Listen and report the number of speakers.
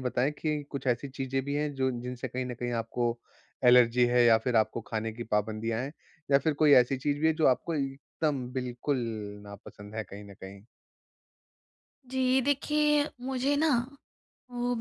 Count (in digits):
2